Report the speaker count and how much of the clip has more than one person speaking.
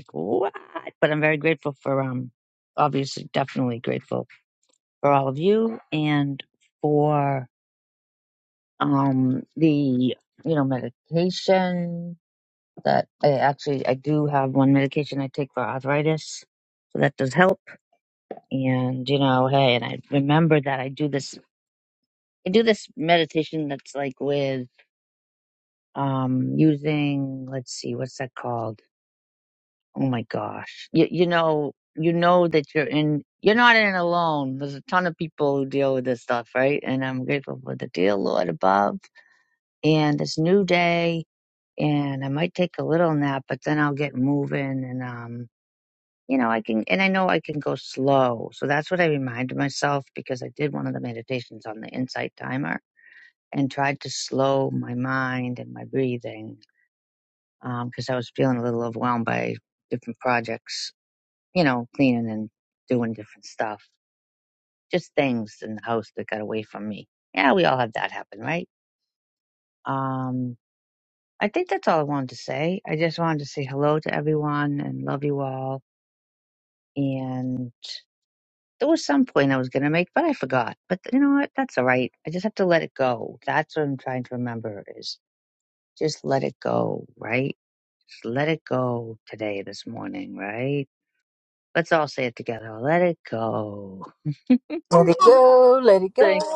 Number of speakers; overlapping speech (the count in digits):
2, under 1%